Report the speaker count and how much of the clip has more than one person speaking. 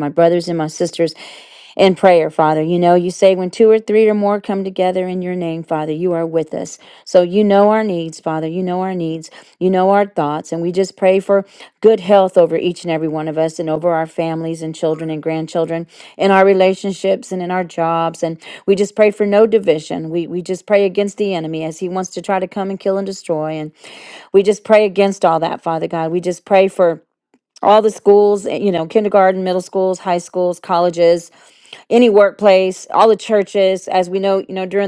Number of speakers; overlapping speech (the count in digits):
1, no overlap